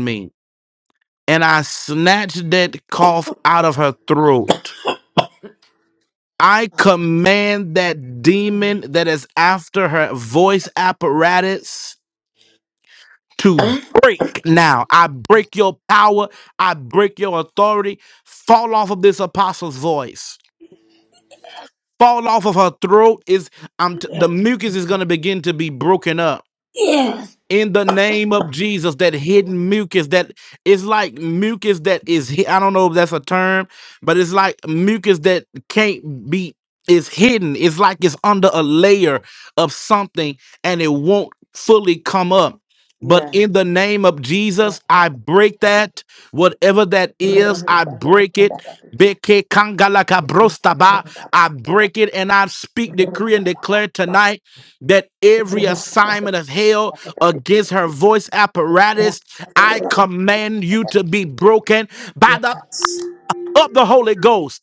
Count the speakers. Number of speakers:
two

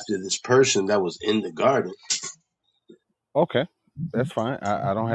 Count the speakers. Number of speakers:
two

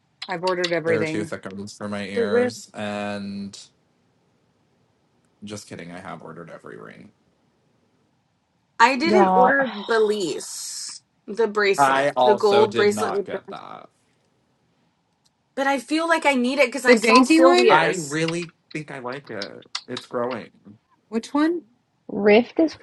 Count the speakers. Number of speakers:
four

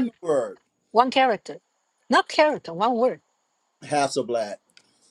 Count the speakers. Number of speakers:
two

